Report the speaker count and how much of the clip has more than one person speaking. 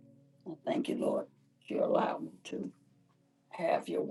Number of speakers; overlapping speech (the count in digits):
1, no overlap